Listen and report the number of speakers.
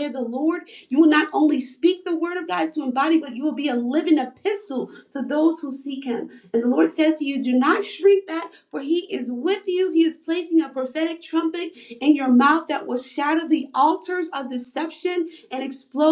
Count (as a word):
one